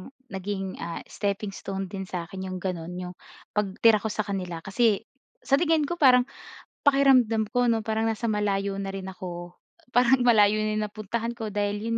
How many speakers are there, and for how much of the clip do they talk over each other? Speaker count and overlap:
one, no overlap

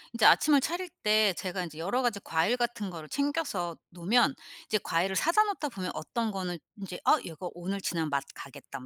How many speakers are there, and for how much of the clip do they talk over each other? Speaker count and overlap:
one, no overlap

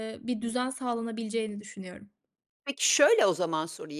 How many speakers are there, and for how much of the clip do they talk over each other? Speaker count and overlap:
two, no overlap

